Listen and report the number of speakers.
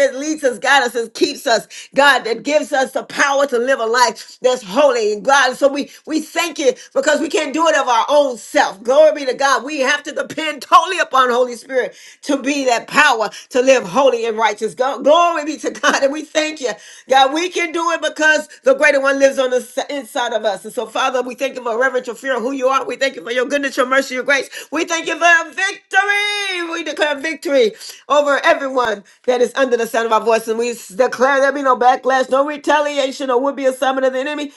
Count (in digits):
1